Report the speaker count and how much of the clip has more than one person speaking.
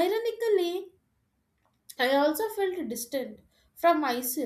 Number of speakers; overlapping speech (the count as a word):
one, no overlap